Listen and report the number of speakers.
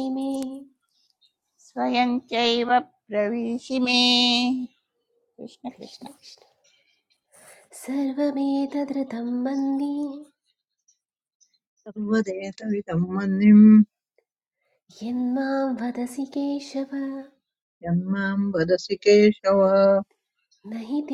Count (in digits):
3